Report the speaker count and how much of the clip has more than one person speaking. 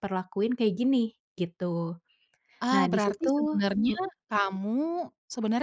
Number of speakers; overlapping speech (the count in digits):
2, about 24%